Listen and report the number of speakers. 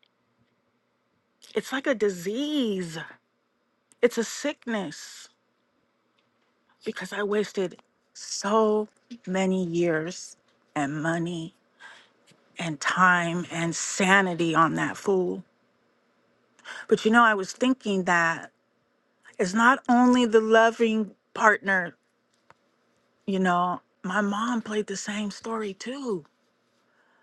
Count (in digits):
1